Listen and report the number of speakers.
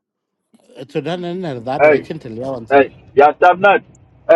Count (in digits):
2